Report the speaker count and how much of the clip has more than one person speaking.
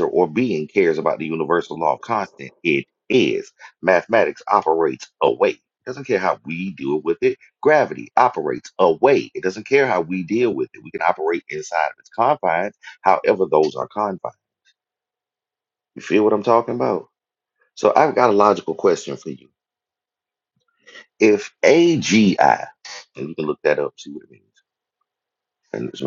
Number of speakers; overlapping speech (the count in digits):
1, no overlap